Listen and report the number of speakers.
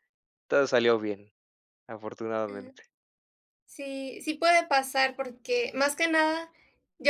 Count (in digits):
2